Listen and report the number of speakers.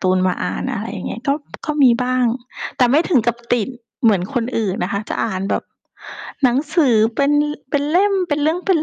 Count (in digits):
1